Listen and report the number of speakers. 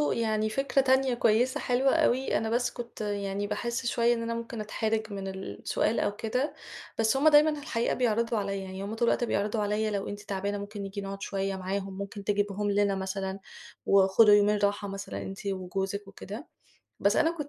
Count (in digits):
1